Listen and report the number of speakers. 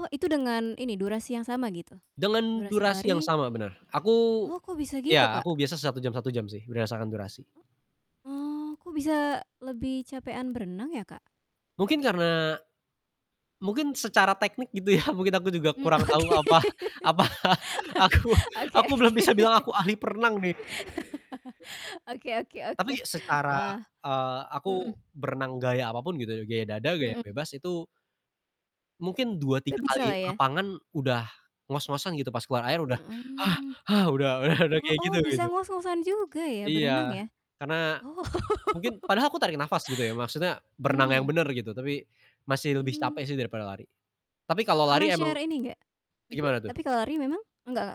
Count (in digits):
2